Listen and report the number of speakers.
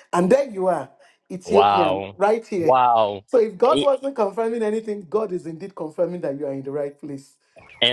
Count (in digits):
2